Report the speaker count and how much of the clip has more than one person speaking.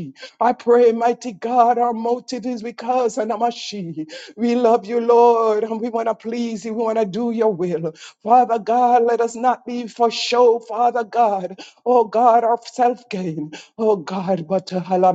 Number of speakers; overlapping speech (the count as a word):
one, no overlap